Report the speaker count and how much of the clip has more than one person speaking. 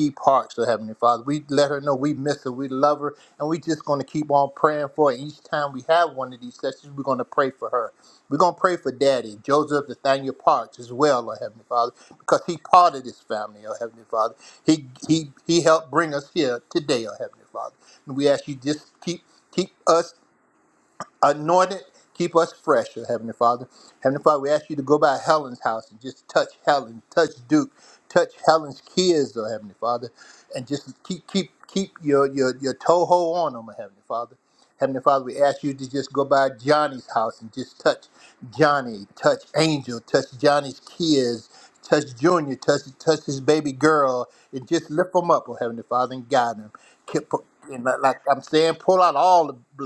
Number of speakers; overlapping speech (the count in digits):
1, no overlap